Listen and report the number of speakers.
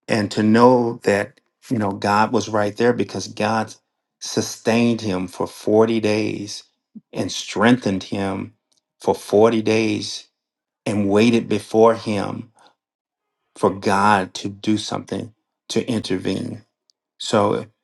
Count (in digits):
1